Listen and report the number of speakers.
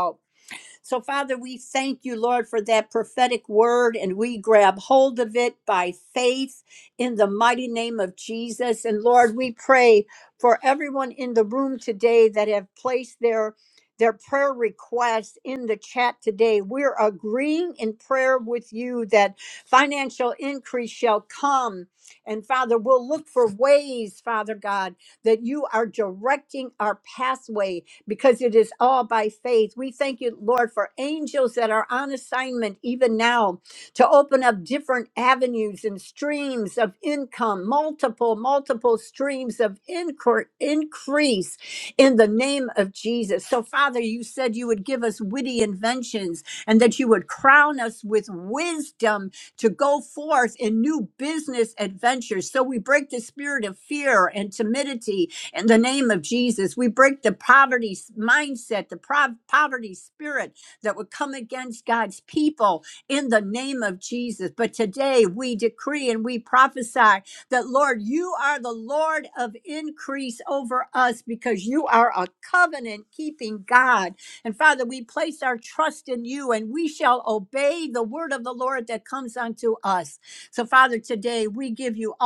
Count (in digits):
1